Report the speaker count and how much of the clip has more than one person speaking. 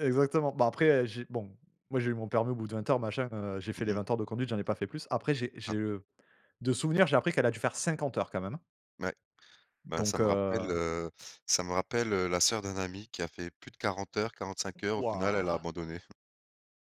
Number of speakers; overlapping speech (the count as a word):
two, about 10%